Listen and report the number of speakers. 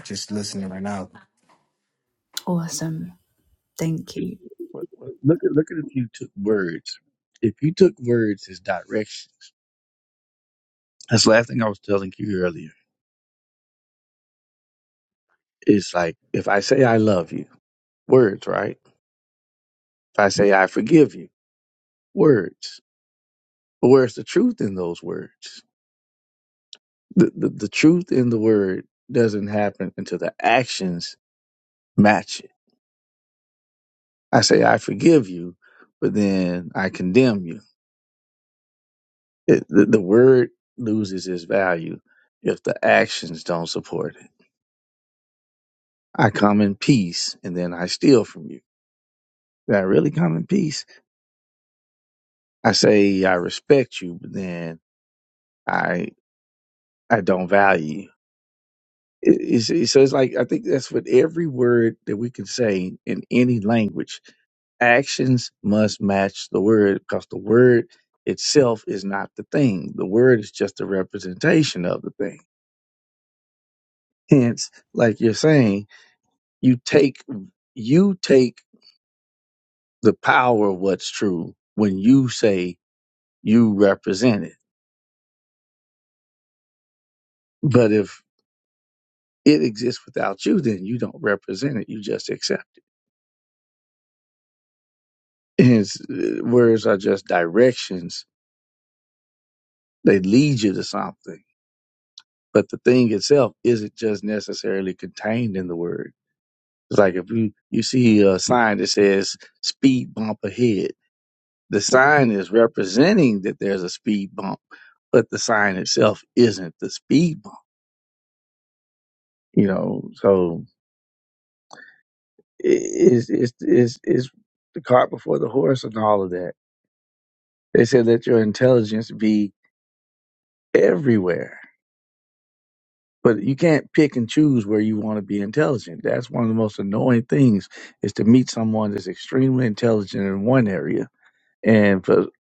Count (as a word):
three